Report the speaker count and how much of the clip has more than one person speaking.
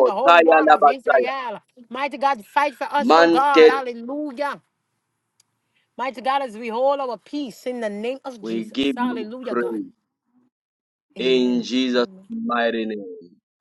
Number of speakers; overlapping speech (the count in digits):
2, about 28%